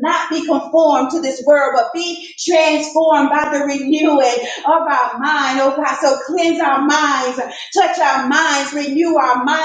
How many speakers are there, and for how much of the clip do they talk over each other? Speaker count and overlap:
1, no overlap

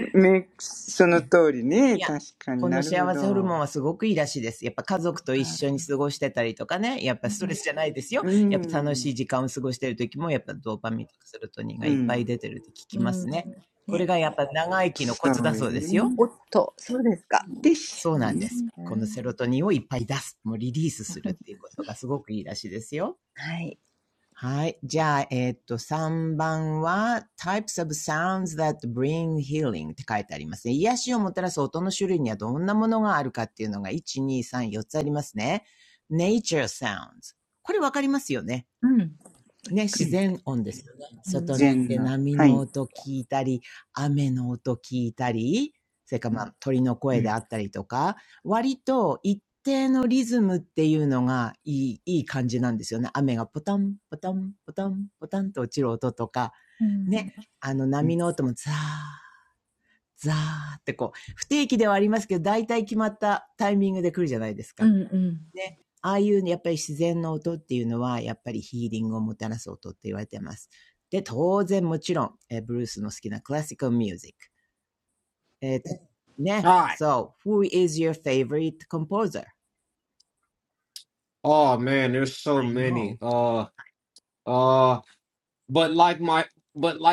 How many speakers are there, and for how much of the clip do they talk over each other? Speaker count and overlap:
4, about 9%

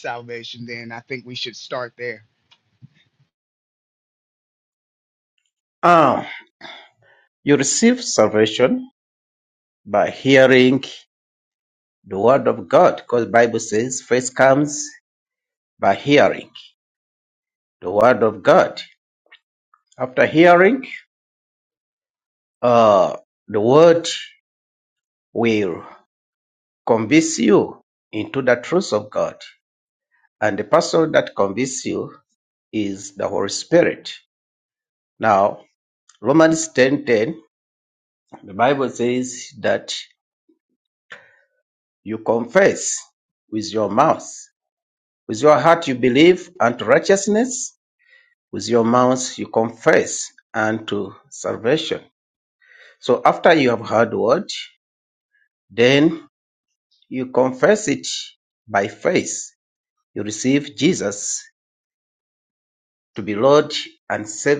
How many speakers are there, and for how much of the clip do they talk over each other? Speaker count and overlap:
2, no overlap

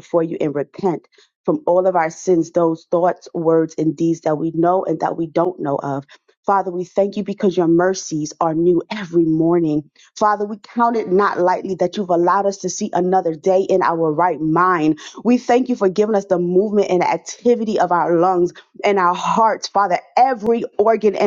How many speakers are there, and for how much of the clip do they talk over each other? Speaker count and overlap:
1, no overlap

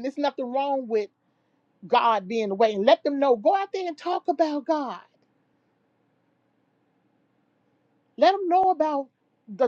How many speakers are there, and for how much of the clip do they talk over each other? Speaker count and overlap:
1, no overlap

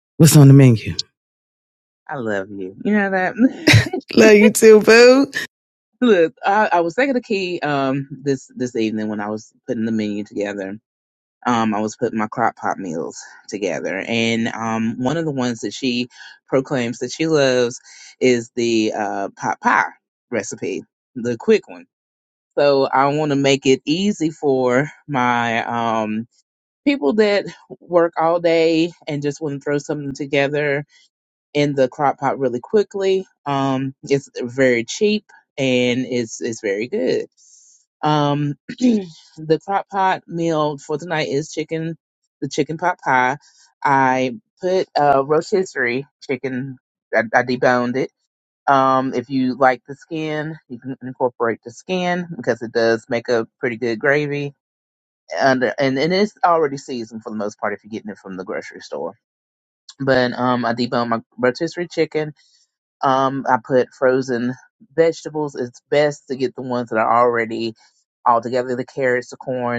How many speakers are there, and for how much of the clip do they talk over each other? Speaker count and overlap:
2, no overlap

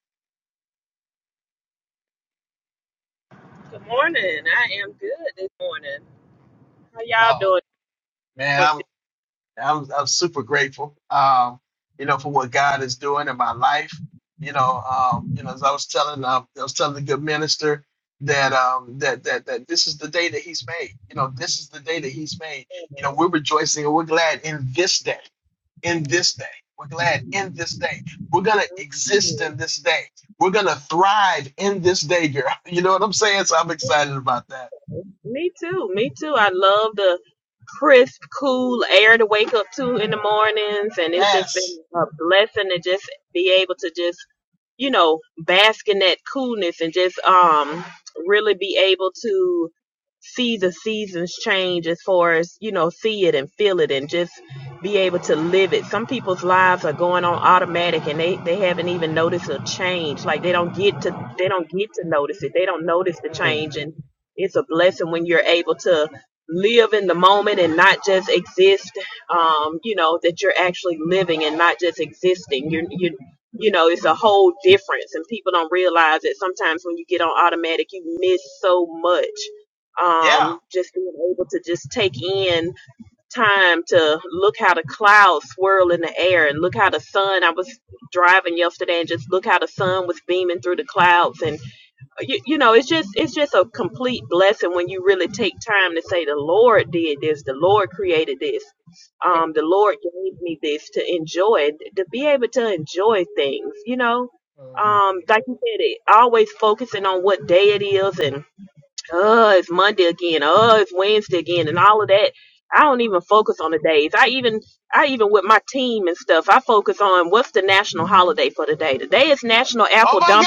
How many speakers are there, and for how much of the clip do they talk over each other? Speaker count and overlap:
2, about 2%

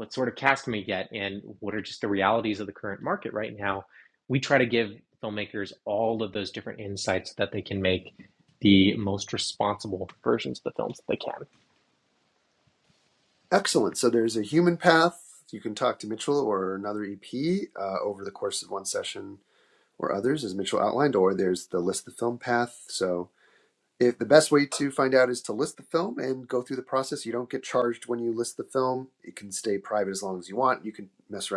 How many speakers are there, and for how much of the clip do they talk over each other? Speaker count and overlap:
2, no overlap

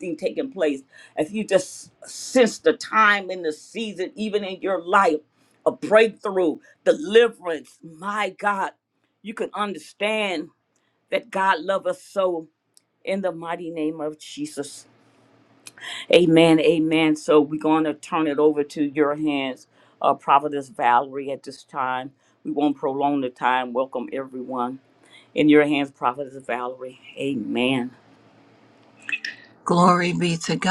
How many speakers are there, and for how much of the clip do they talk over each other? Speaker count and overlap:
2, no overlap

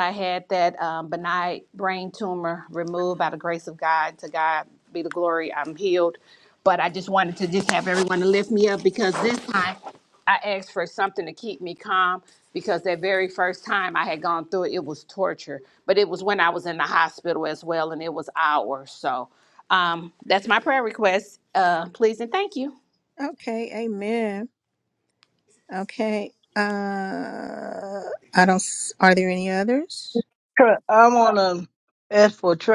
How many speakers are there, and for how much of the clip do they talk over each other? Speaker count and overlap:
3, no overlap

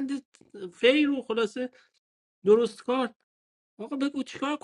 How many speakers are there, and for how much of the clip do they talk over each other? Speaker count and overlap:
1, no overlap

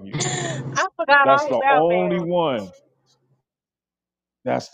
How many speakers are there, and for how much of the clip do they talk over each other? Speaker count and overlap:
2, about 22%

